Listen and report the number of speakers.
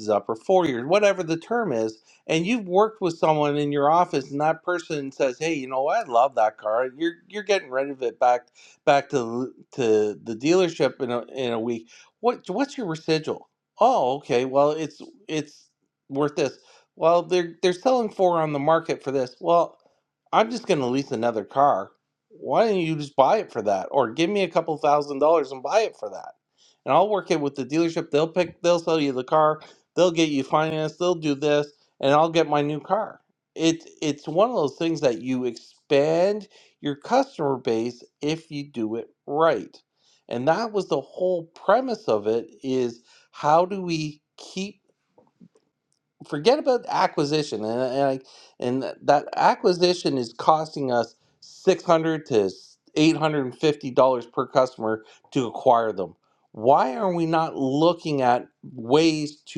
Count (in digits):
1